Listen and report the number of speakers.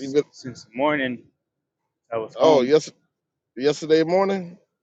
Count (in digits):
2